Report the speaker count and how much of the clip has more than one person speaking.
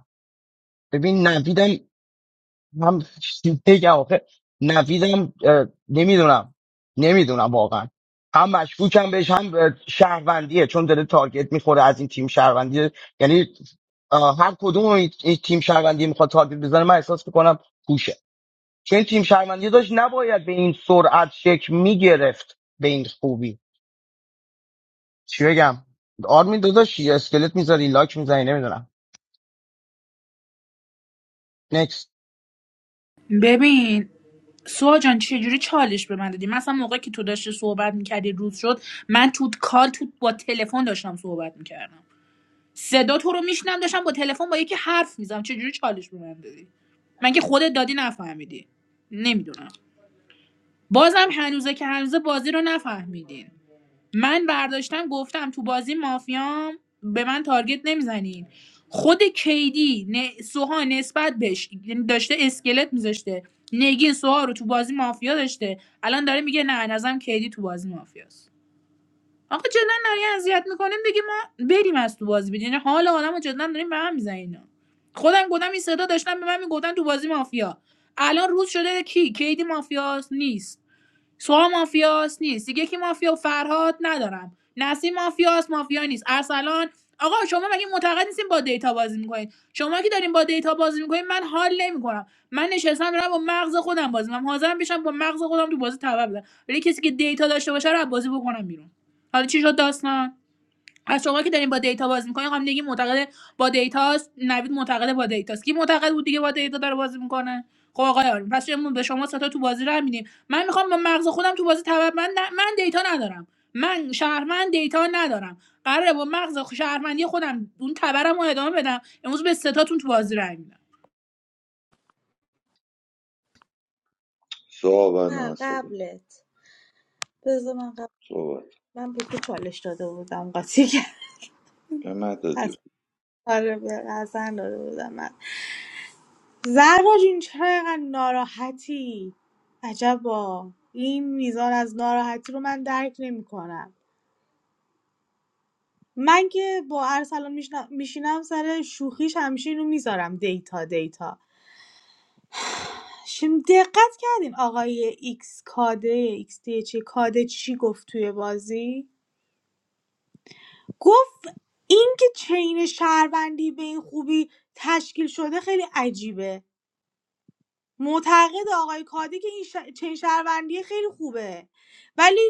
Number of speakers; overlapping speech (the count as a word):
four, under 1%